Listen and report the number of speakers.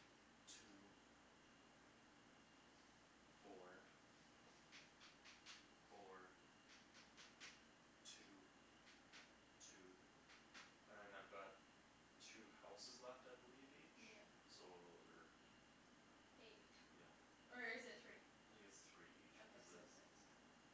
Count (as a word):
two